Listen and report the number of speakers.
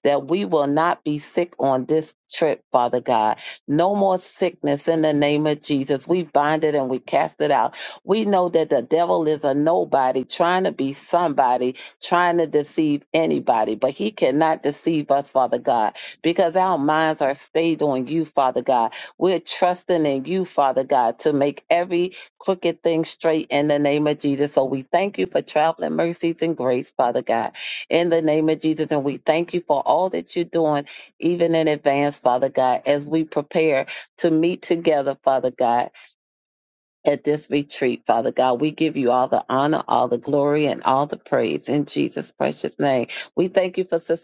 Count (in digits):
1